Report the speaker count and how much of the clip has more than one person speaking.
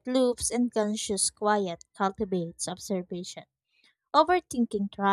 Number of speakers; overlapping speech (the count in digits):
1, no overlap